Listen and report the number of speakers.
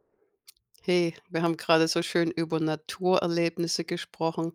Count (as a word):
one